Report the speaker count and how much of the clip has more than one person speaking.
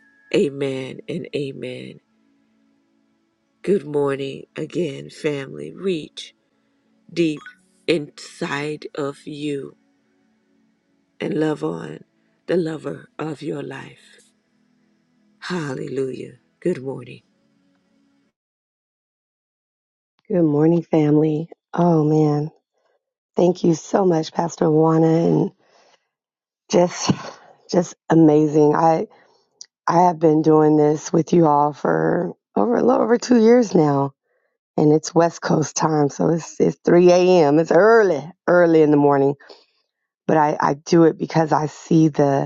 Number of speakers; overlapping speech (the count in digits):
2, no overlap